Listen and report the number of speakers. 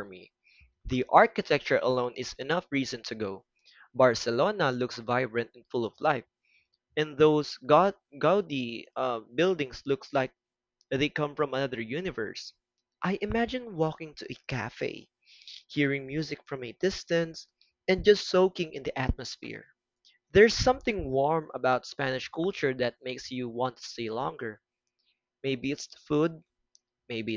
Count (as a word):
one